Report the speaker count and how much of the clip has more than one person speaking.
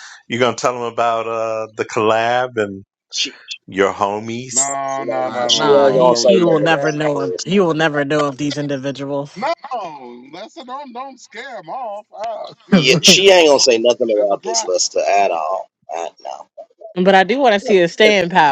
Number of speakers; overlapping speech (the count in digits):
4, about 20%